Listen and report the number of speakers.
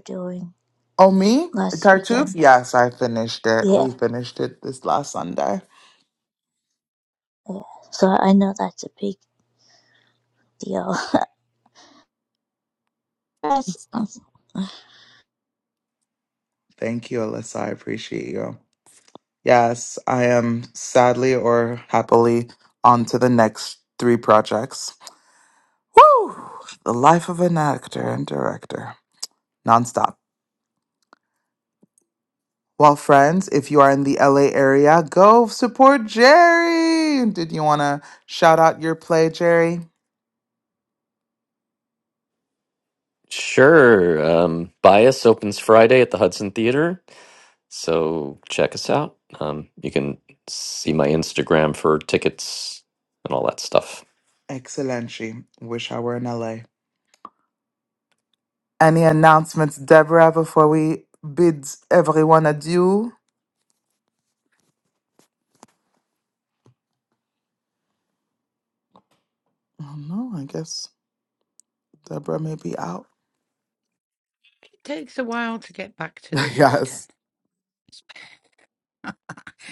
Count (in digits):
4